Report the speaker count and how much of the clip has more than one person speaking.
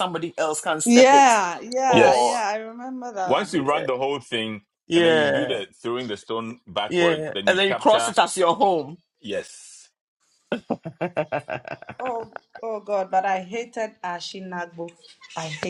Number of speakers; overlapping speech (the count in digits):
3, about 22%